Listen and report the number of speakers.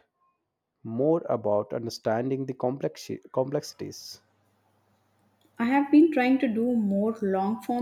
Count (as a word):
two